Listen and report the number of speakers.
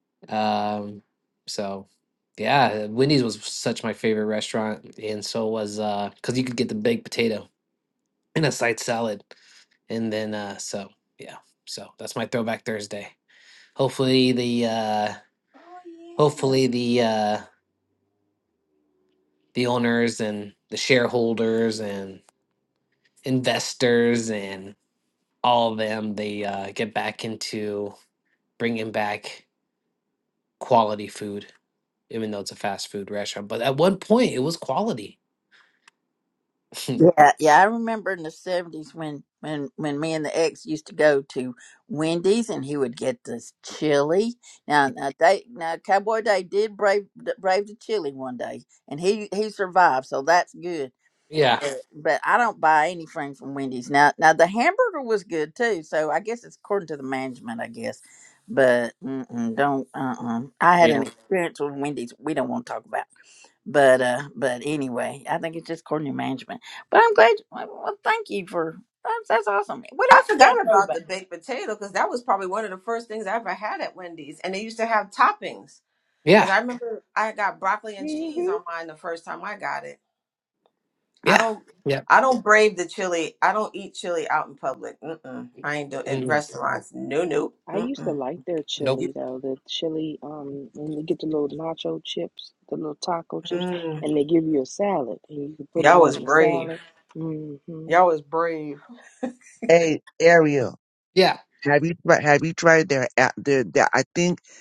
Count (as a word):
five